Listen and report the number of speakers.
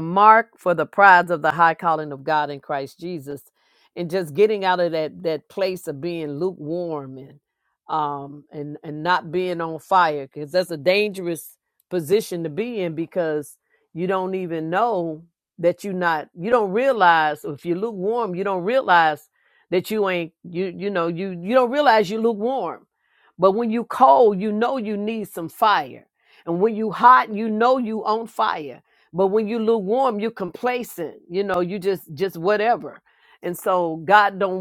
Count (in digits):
1